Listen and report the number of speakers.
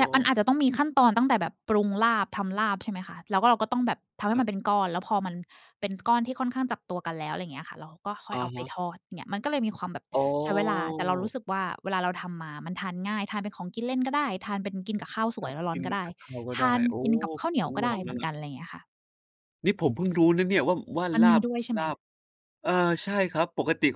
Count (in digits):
2